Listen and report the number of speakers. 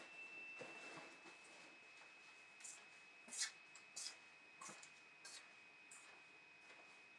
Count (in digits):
0